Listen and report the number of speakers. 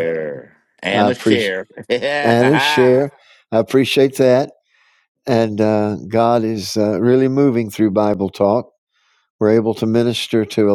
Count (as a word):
two